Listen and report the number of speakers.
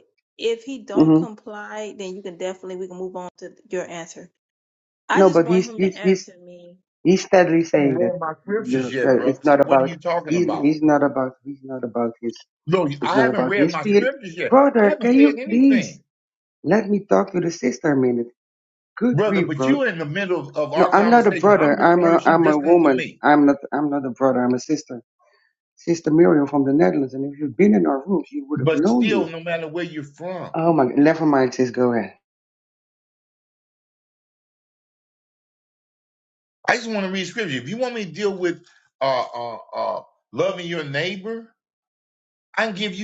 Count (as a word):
three